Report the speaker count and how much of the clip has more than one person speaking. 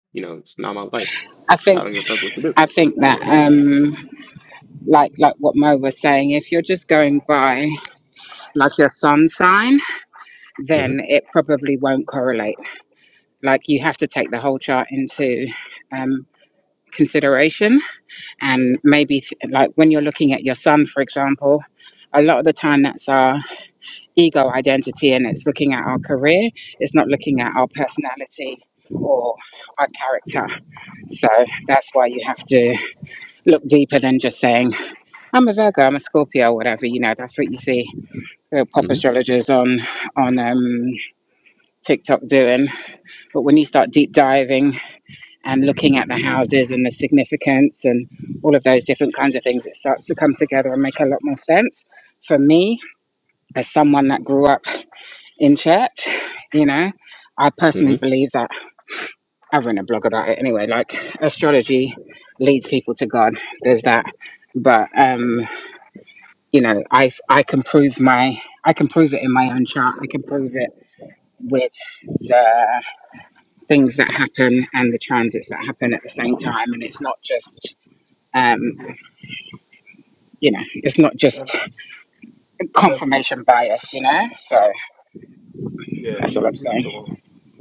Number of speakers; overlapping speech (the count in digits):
3, about 3%